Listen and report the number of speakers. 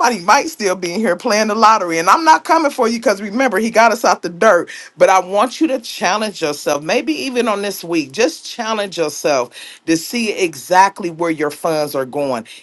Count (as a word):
one